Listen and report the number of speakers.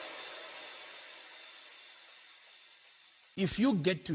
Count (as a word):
zero